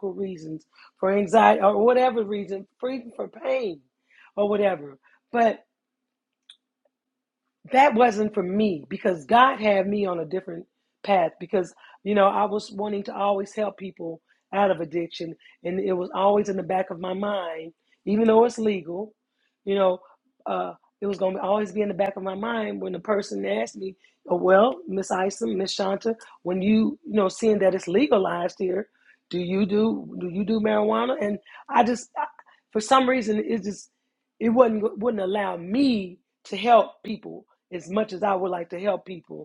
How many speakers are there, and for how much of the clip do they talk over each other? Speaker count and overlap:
one, no overlap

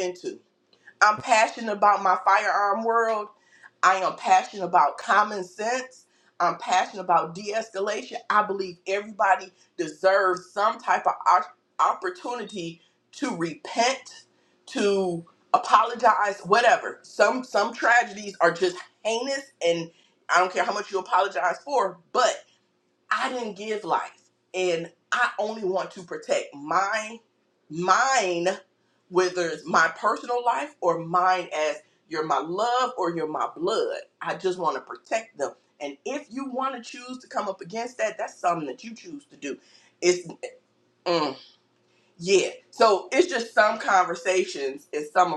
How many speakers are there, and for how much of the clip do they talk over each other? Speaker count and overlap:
one, no overlap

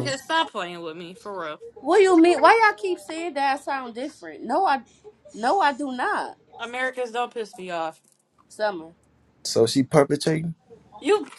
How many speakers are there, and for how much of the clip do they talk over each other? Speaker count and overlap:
three, about 1%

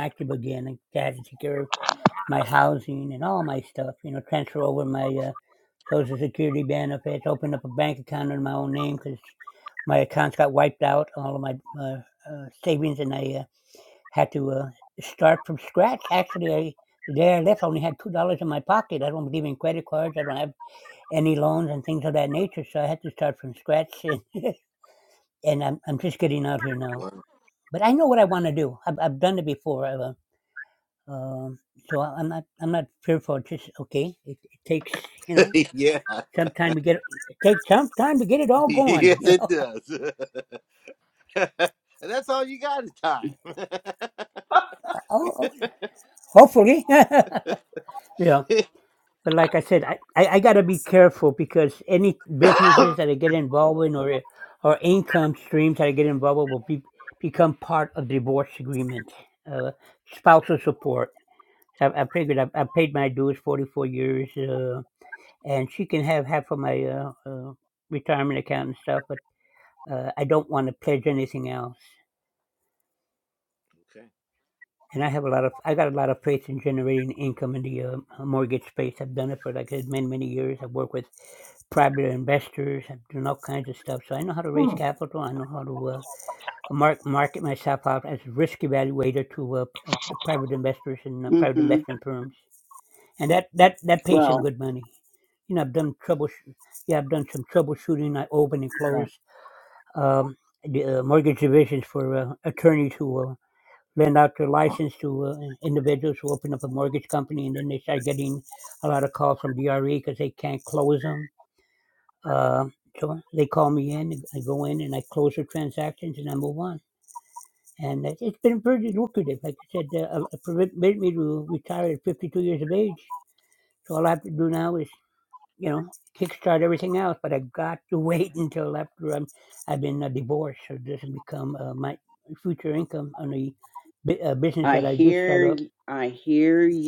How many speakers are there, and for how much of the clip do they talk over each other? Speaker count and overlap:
three, about 2%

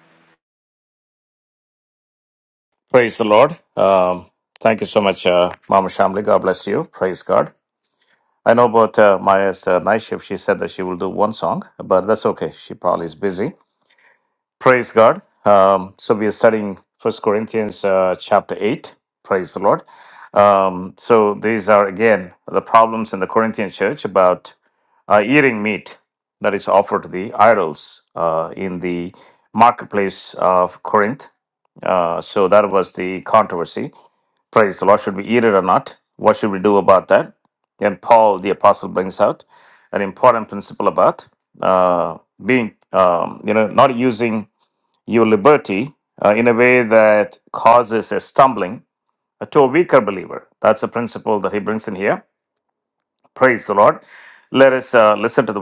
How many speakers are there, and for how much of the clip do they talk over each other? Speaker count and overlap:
one, no overlap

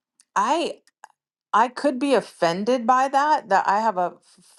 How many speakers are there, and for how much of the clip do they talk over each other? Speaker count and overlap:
one, no overlap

